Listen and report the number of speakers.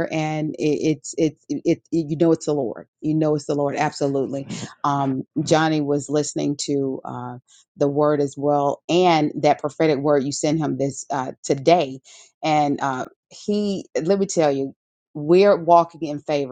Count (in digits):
1